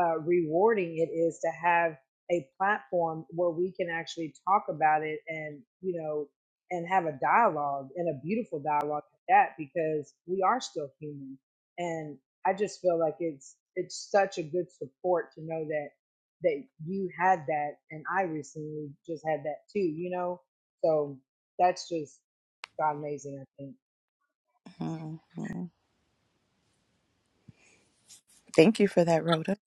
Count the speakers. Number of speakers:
2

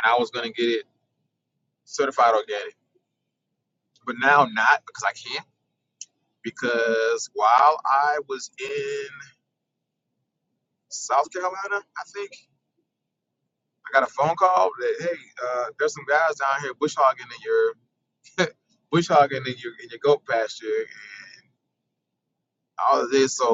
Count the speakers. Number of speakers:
1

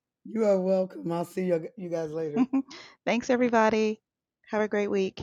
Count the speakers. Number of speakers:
2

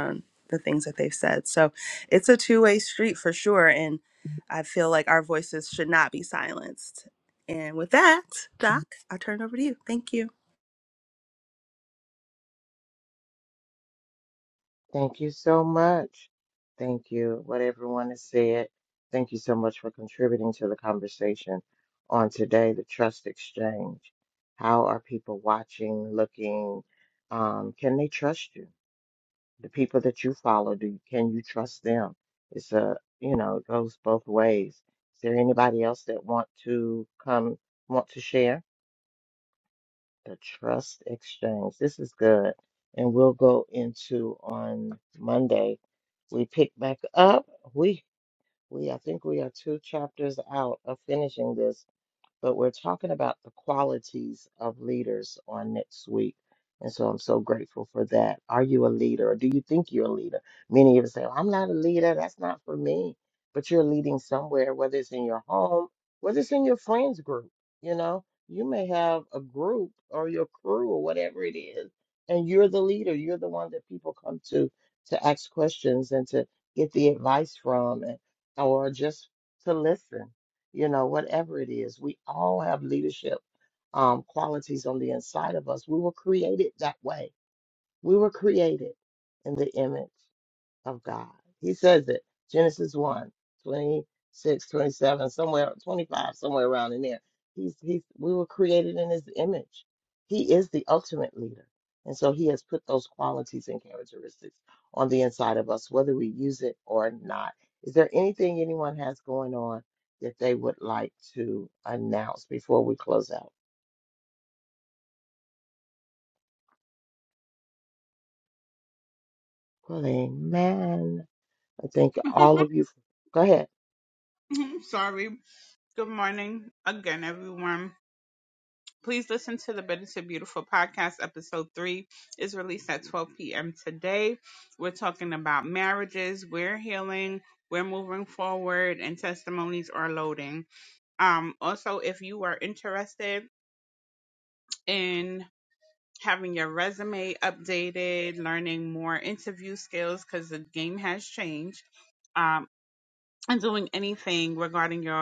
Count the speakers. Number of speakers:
3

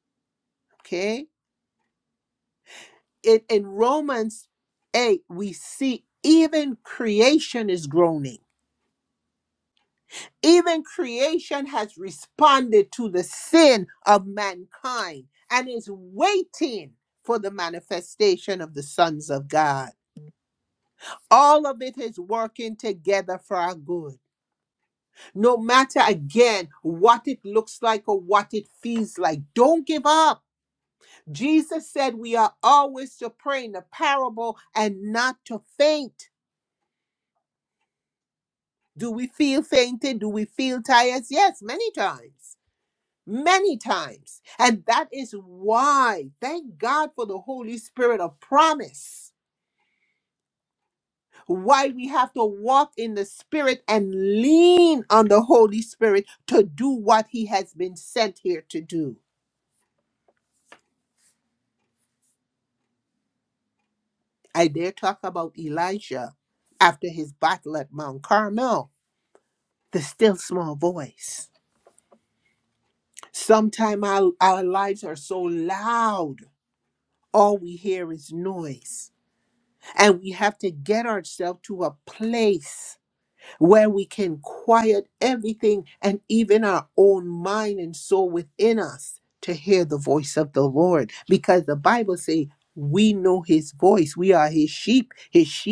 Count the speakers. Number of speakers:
1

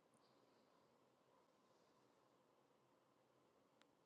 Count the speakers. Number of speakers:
0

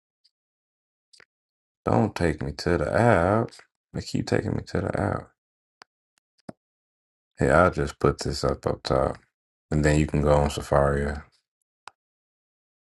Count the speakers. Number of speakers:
1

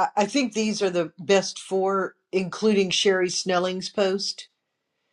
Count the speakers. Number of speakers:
1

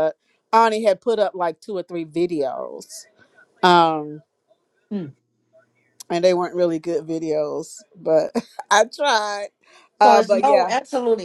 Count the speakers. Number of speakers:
2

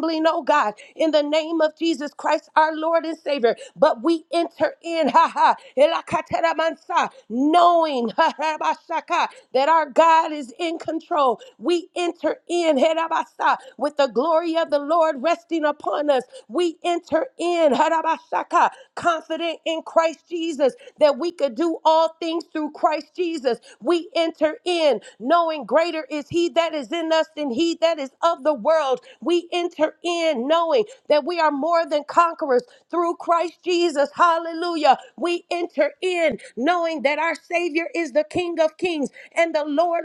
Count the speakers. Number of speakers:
1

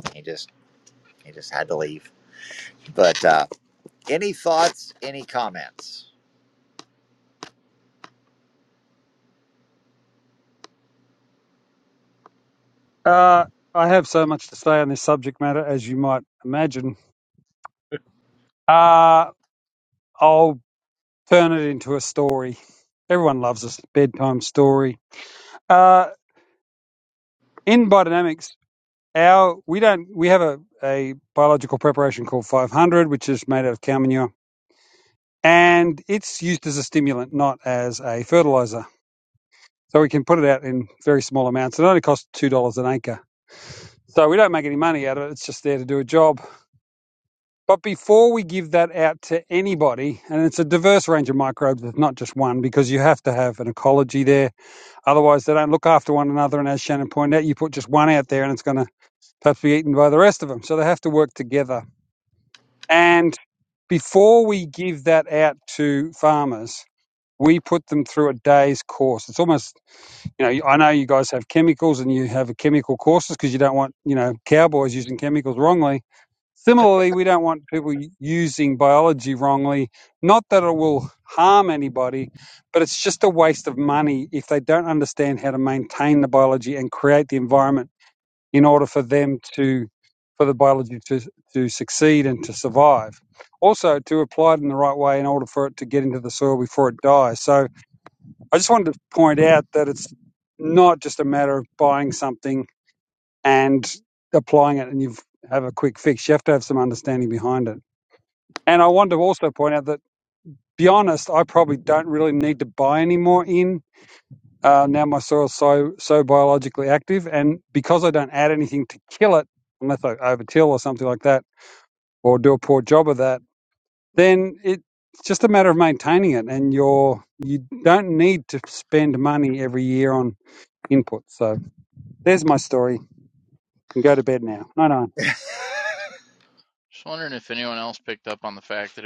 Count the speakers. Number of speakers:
3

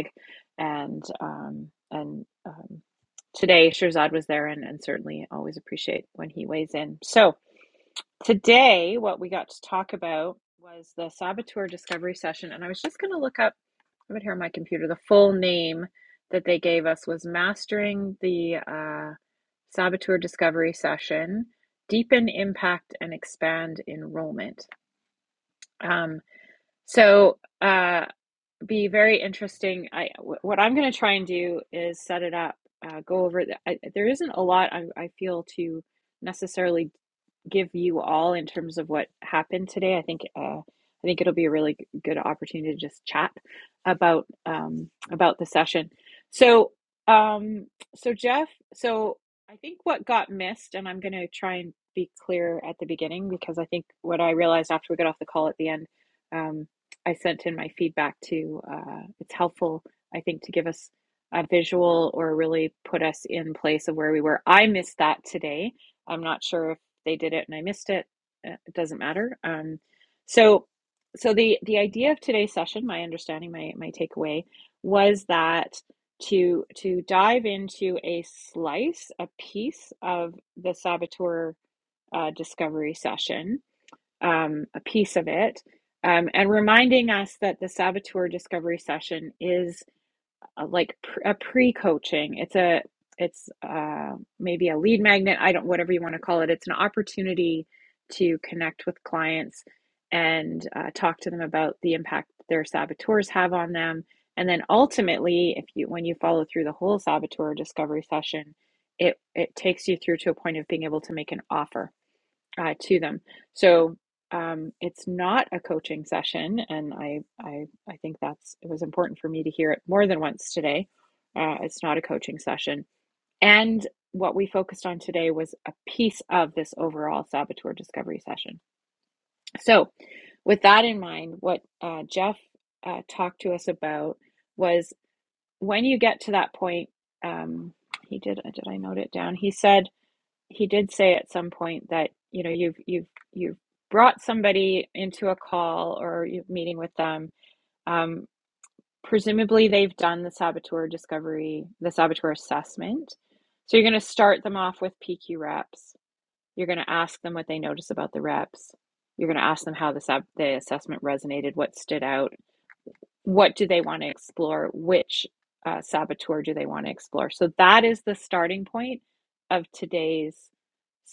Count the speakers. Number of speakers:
1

